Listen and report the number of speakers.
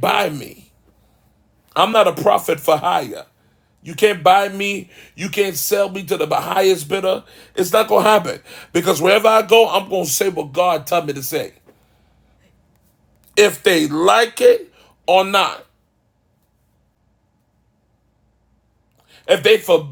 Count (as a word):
one